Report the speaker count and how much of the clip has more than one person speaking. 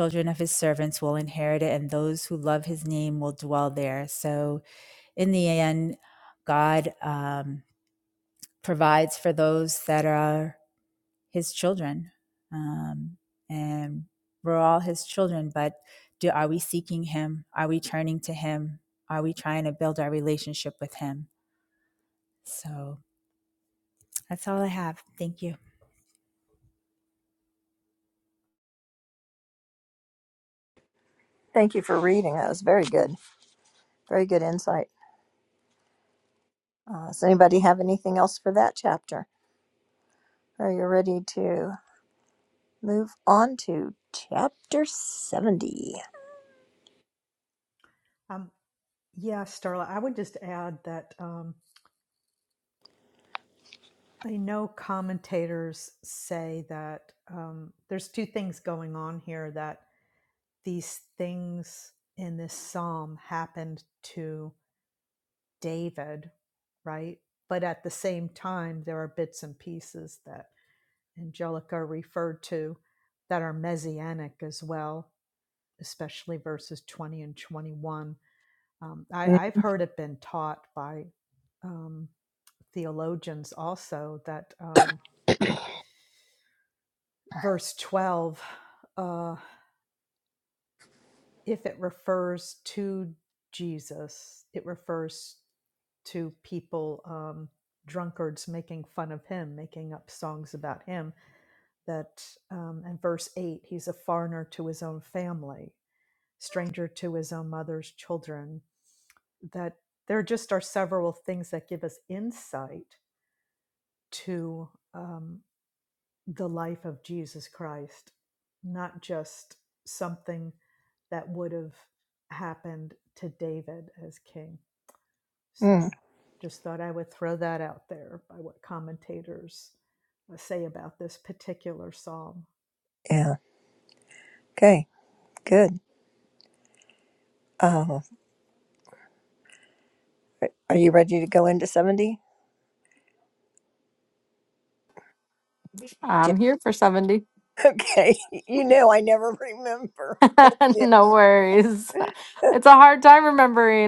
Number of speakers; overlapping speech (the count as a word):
four, under 1%